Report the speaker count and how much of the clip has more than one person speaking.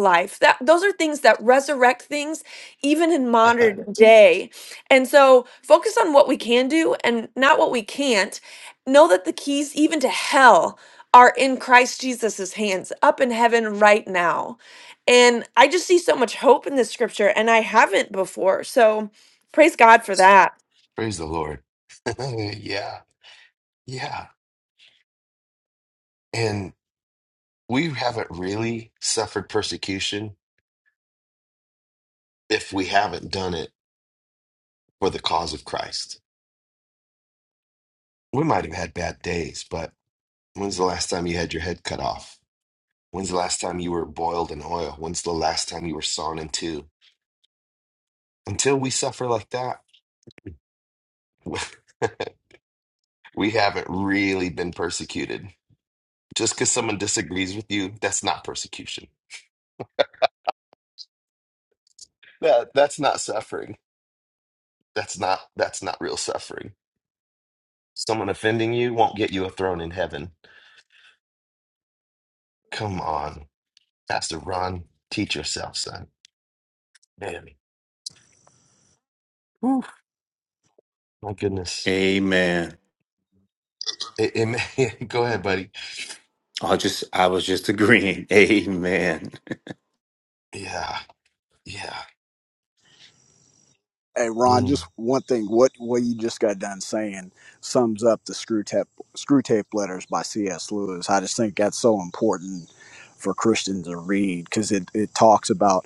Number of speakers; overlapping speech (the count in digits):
4, under 1%